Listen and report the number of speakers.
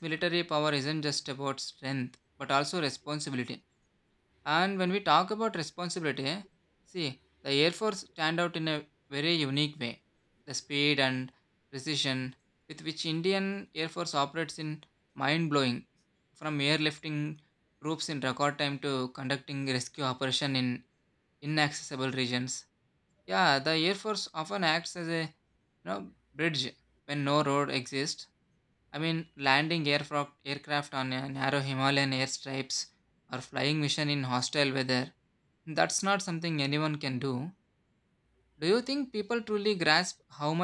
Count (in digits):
1